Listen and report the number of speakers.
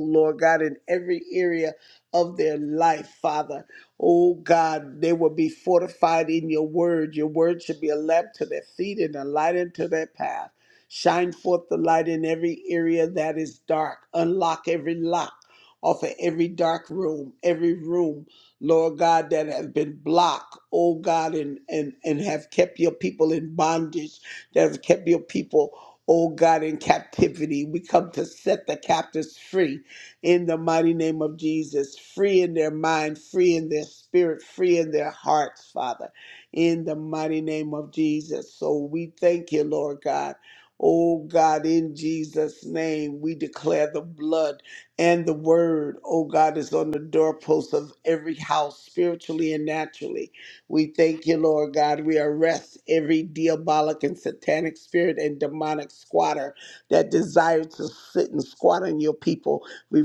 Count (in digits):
1